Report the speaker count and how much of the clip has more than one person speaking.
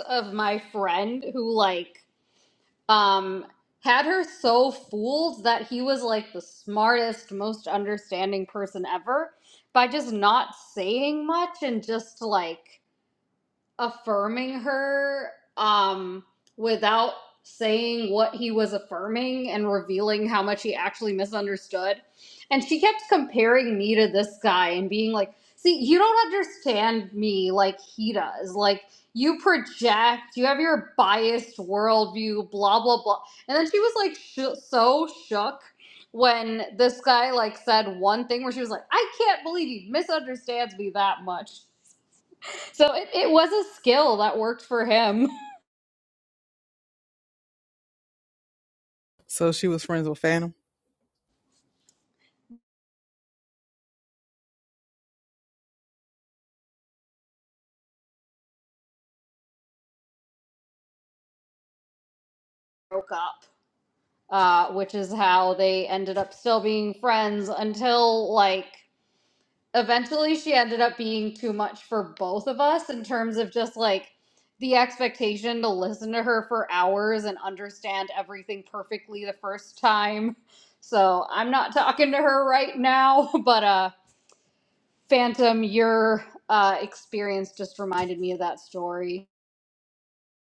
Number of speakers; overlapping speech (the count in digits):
2, no overlap